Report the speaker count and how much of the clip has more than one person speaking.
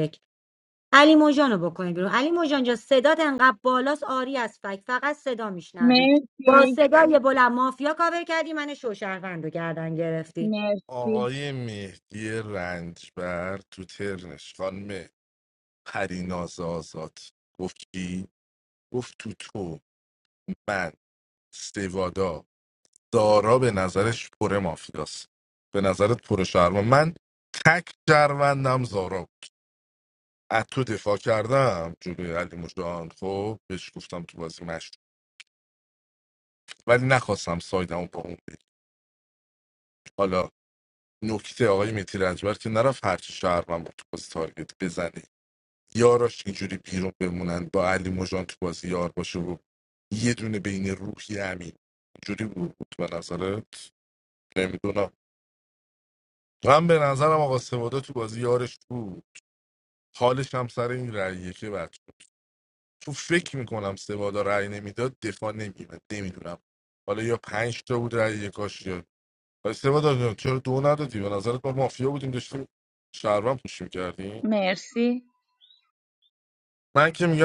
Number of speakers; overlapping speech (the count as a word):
three, about 1%